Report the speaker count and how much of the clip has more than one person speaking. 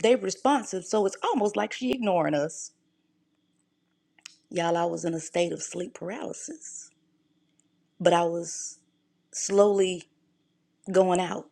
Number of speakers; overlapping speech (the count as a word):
one, no overlap